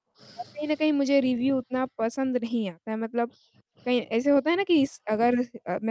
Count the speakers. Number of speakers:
1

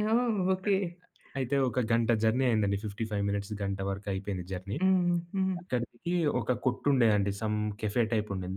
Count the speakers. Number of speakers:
2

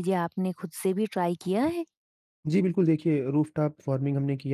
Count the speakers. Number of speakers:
2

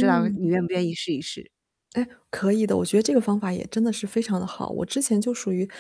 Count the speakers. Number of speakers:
2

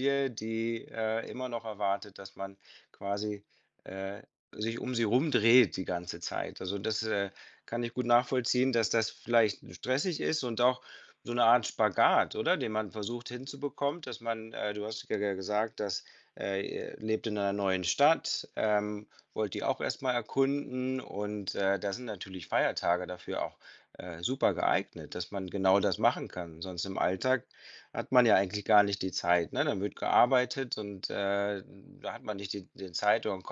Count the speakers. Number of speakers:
1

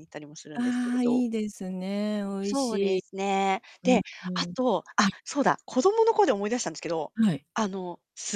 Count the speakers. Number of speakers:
2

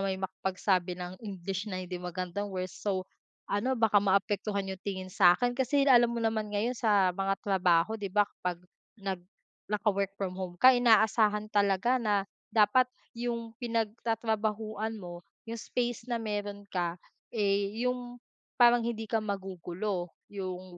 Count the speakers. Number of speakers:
1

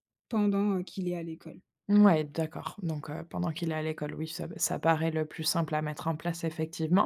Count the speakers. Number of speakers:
2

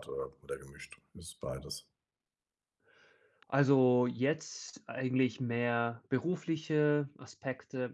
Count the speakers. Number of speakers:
2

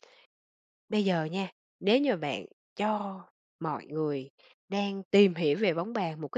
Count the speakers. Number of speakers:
1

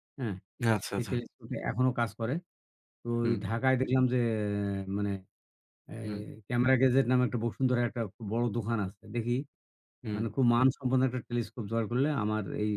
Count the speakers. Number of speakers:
2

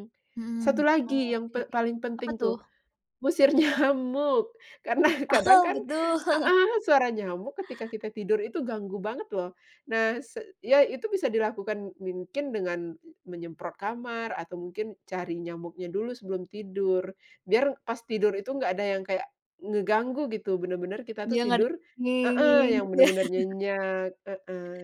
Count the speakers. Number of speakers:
2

